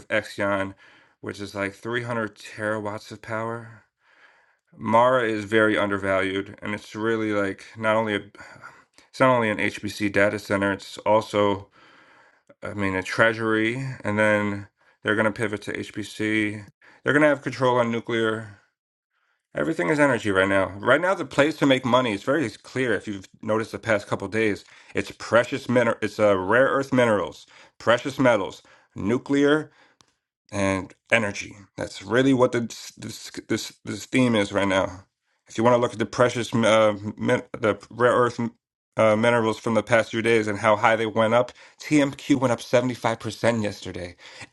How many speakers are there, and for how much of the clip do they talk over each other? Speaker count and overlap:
one, no overlap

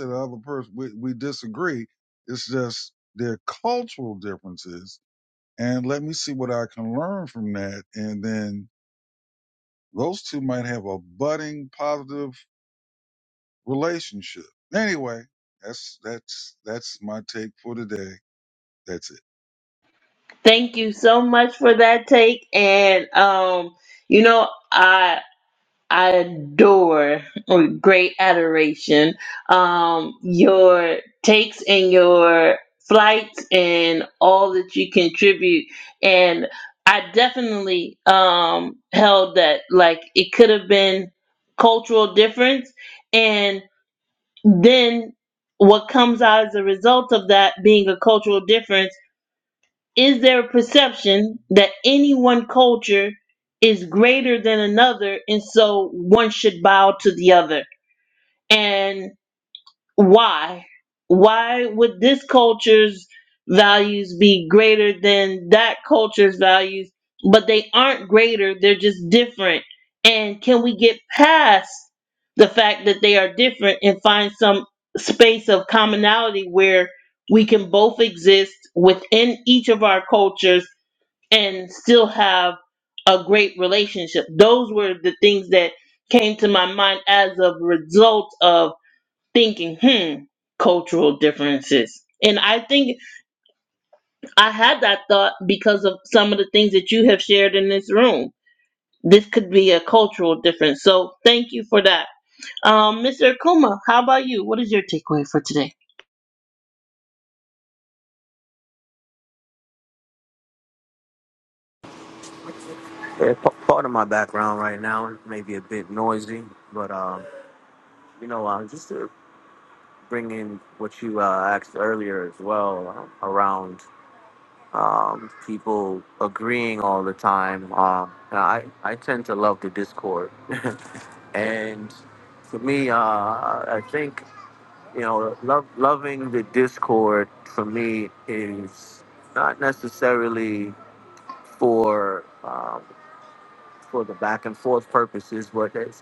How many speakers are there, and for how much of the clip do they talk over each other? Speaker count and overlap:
three, no overlap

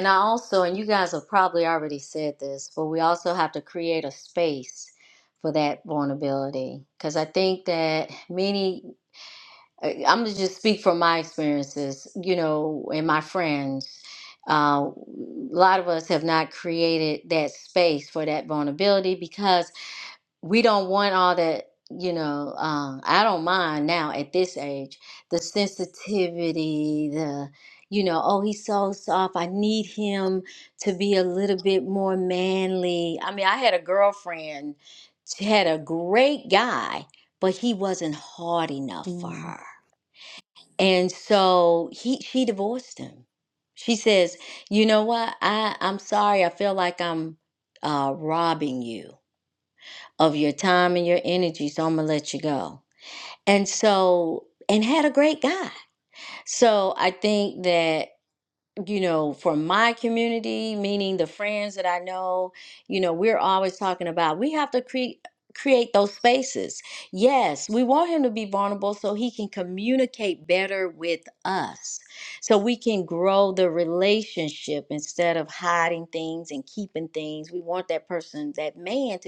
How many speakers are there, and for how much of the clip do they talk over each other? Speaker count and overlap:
one, no overlap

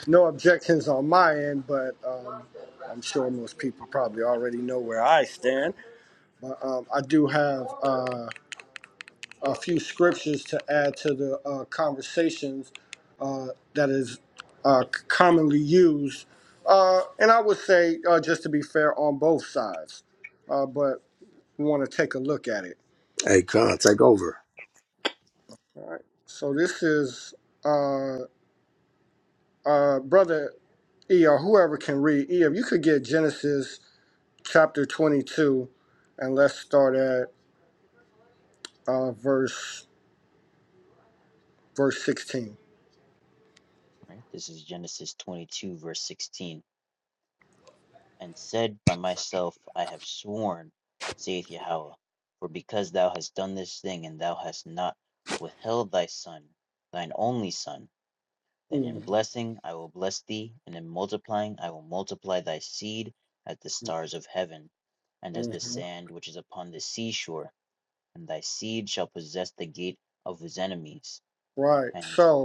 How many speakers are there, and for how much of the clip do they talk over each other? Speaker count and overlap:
three, about 2%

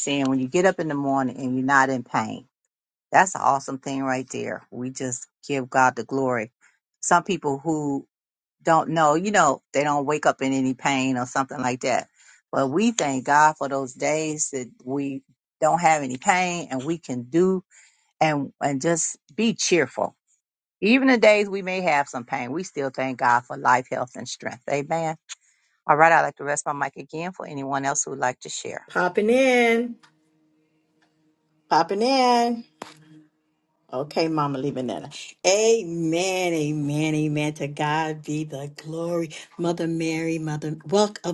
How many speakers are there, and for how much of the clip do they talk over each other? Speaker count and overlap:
two, no overlap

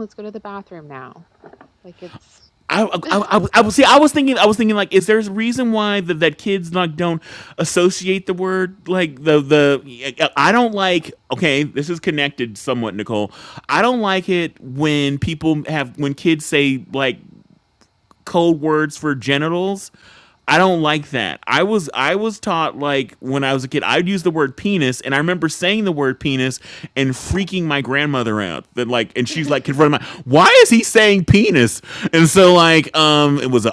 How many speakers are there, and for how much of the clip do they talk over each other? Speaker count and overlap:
two, about 1%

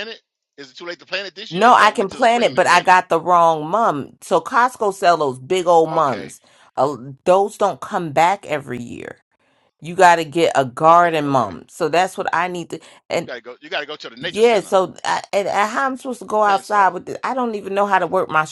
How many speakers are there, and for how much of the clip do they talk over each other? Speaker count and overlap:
two, about 19%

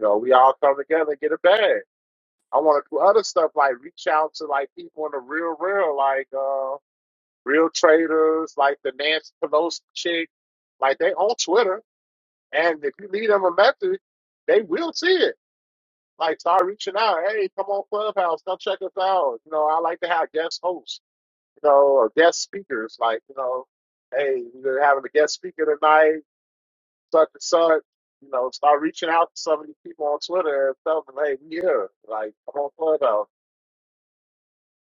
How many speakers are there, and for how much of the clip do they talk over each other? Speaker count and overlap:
one, no overlap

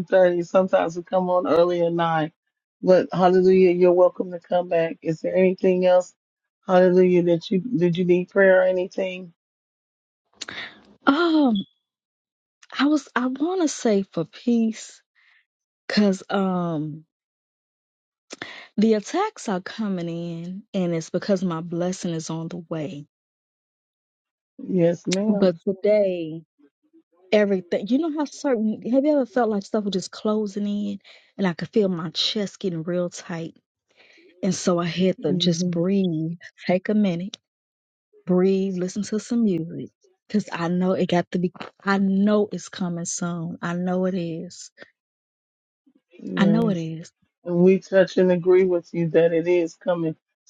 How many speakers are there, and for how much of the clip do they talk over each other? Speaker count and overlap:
two, about 2%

